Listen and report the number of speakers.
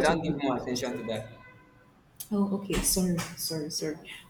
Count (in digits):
2